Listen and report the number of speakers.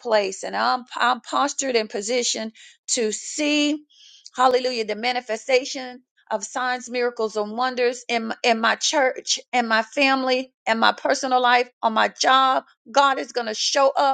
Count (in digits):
1